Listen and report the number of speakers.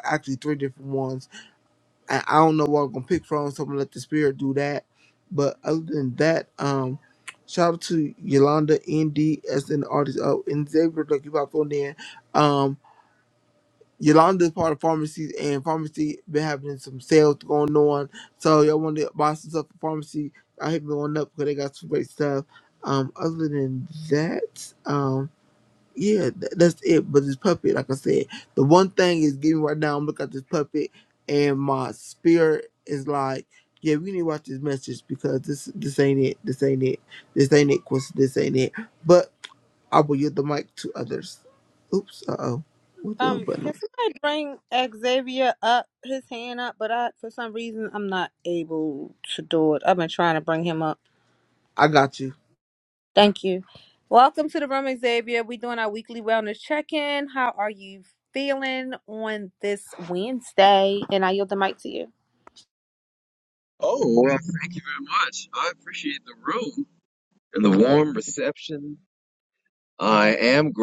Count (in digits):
3